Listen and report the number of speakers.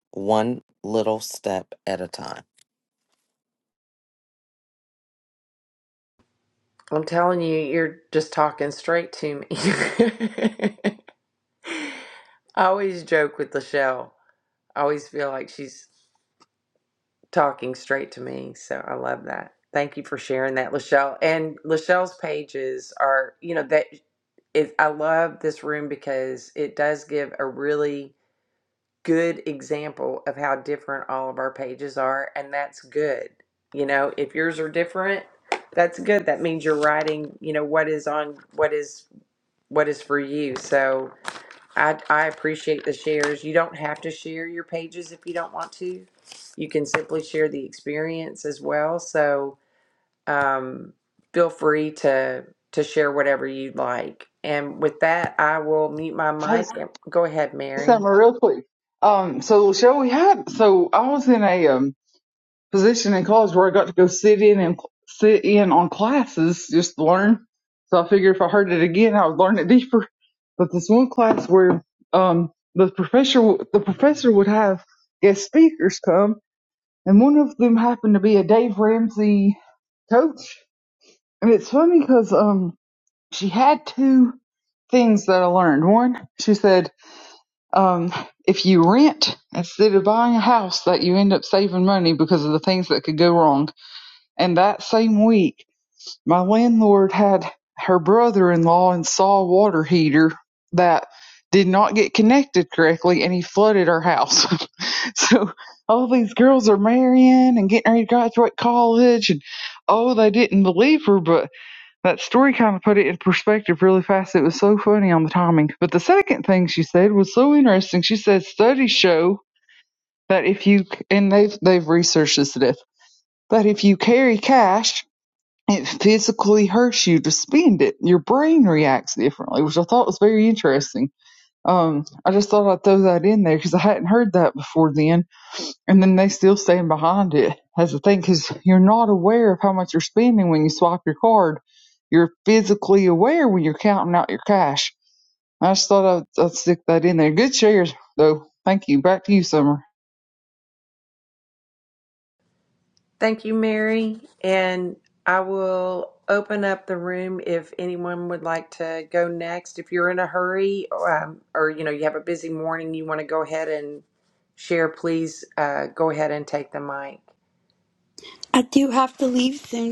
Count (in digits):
4